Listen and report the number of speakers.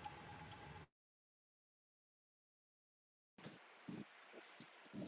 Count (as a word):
zero